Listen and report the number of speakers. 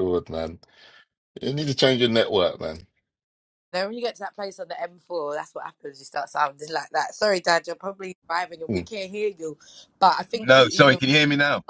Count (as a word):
three